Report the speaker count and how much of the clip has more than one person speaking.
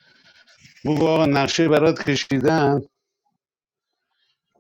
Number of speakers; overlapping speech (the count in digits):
1, no overlap